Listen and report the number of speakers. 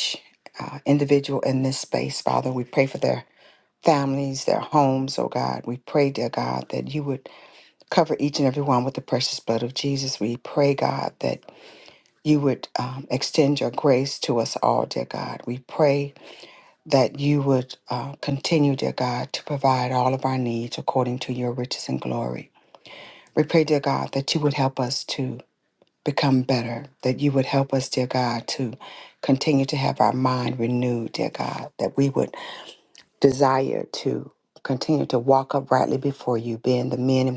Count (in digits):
1